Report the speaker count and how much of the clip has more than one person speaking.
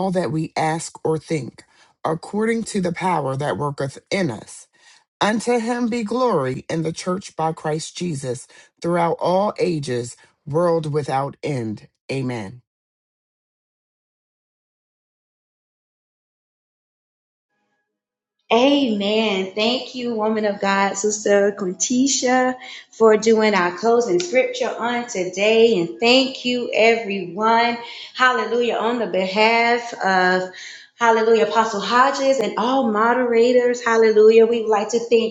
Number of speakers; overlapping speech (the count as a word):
two, no overlap